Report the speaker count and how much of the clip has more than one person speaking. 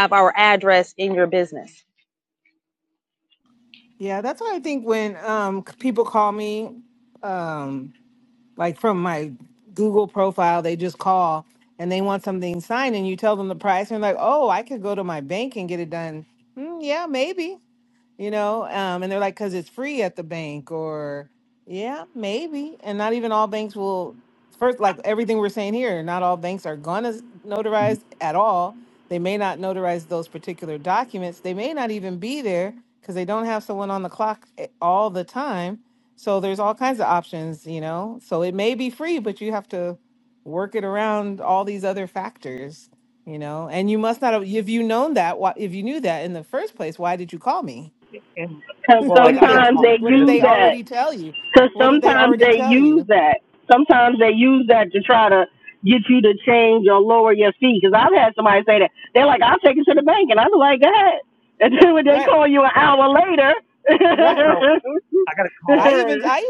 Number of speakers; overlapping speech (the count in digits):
4, about 5%